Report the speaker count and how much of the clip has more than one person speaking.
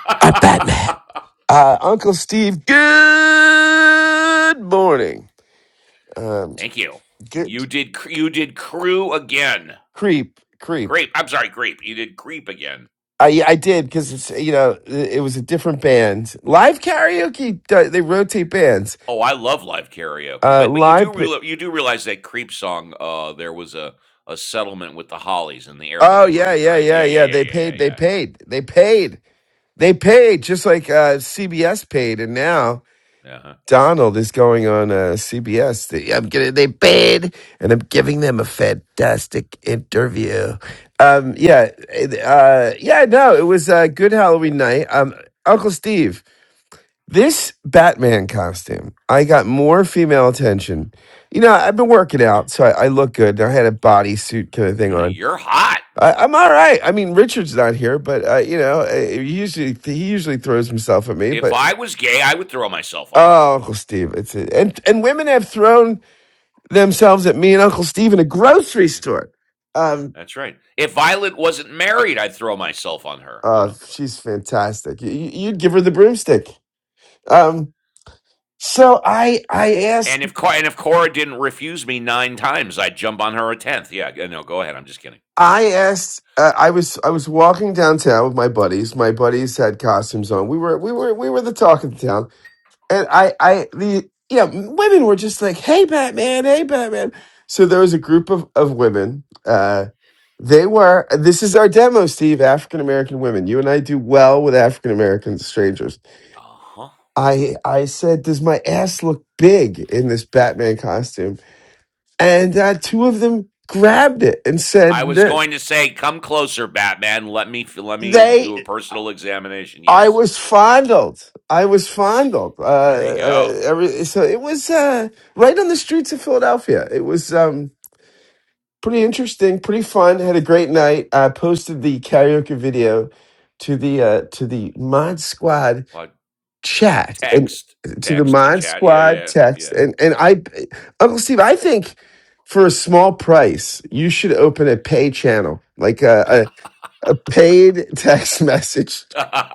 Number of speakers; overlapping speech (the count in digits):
2, about 5%